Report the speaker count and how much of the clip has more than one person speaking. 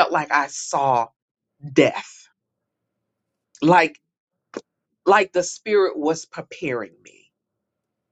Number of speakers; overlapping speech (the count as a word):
one, no overlap